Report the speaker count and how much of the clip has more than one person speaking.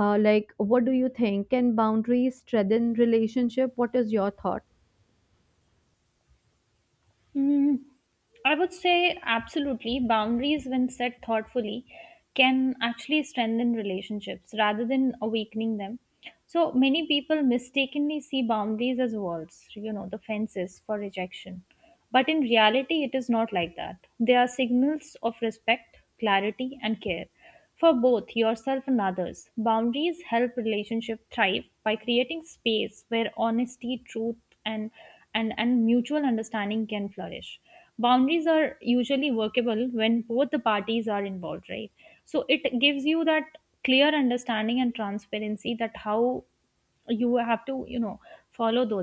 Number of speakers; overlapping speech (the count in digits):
2, no overlap